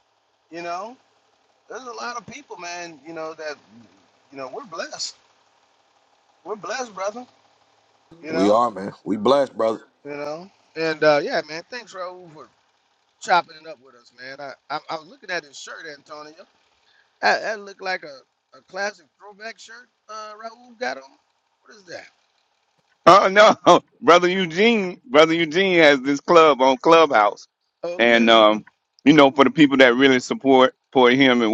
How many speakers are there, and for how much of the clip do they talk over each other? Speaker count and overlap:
3, about 2%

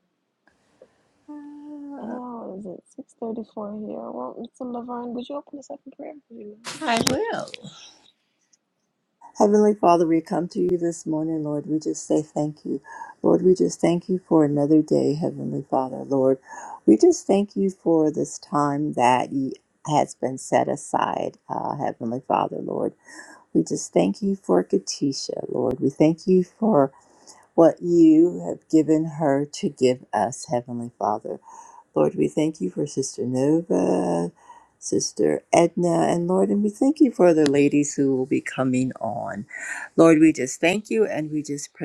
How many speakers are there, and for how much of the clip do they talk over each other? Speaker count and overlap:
2, no overlap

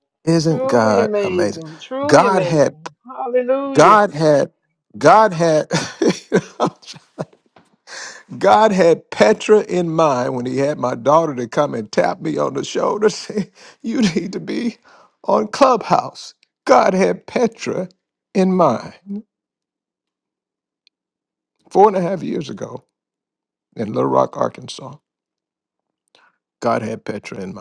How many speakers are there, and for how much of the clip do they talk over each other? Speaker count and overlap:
2, about 7%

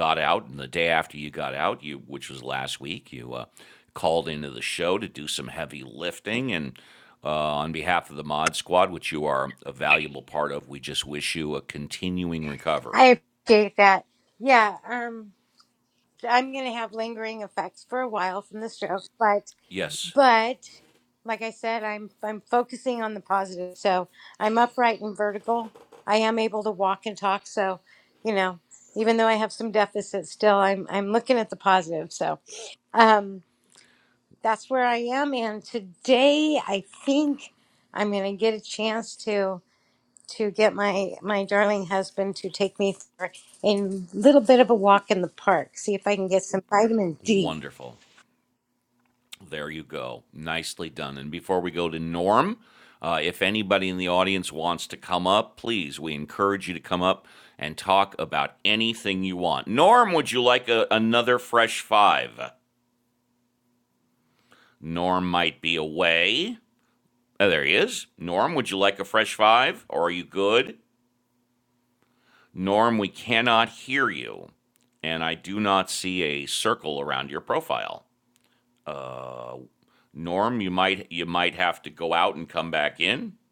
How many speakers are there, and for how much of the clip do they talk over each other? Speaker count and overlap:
2, under 1%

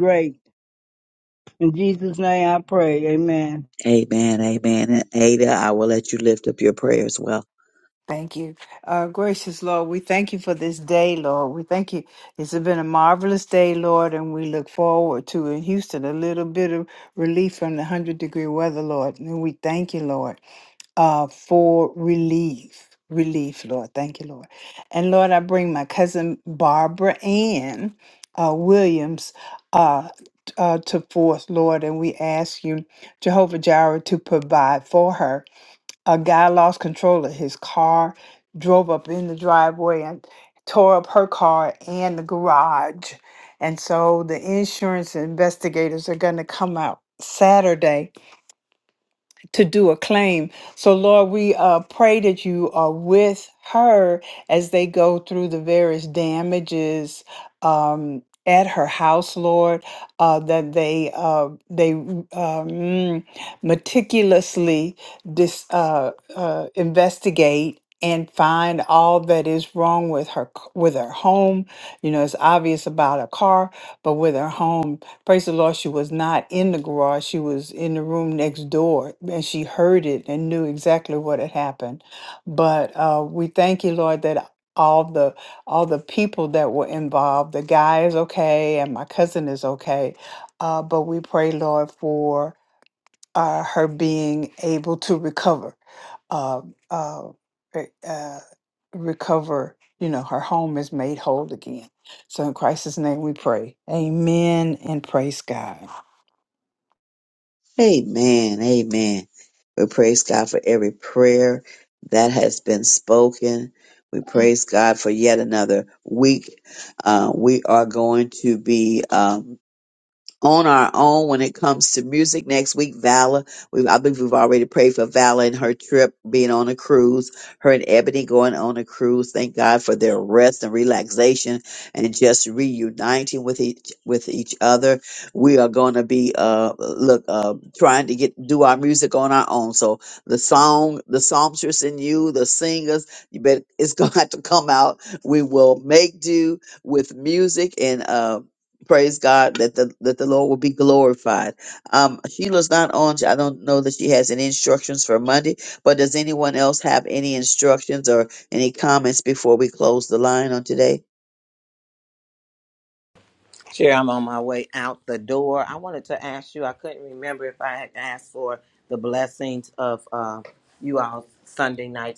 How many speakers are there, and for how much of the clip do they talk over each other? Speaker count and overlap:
4, no overlap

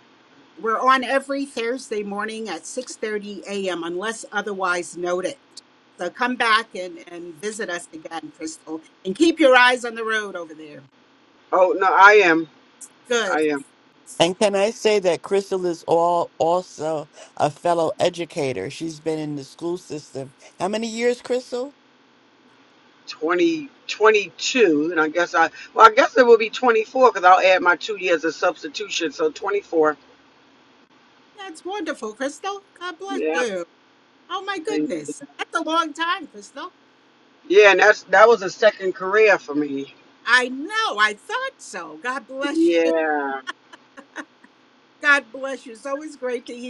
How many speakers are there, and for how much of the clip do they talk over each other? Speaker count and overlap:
3, about 3%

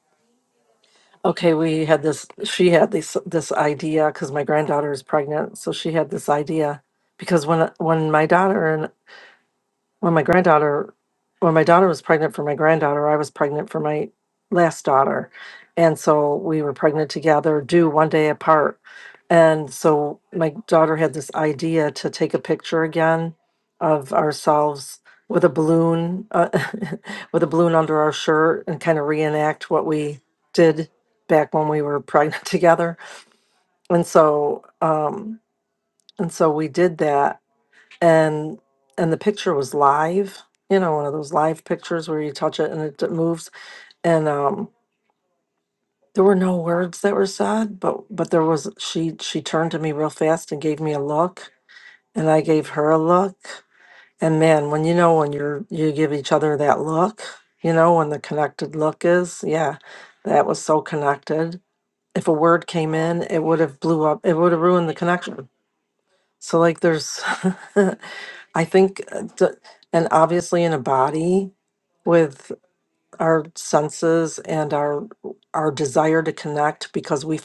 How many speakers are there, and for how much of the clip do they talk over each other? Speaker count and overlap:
1, no overlap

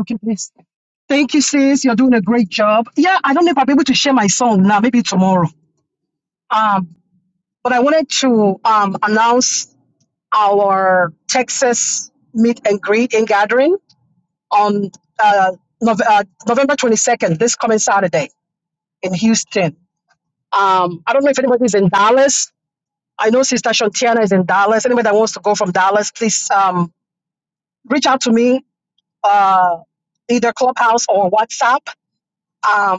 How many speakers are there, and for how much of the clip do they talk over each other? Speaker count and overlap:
1, no overlap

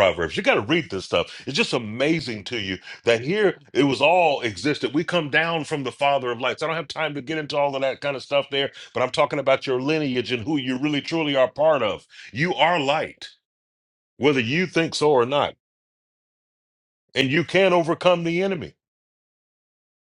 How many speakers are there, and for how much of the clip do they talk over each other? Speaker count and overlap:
1, no overlap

